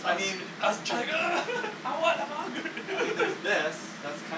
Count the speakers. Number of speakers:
2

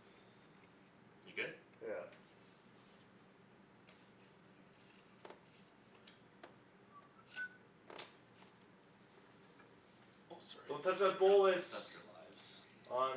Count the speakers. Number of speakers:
2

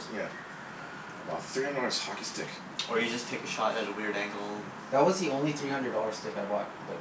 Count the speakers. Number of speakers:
3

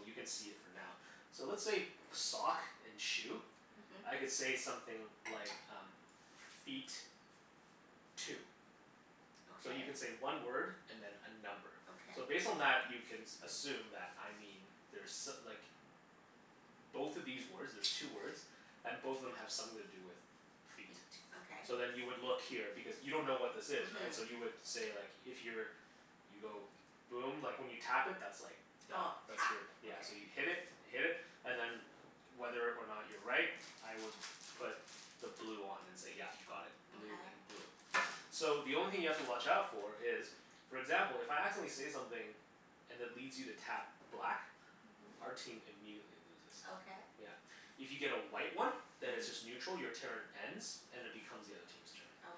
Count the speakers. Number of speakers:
2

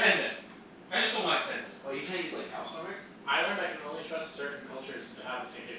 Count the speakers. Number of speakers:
3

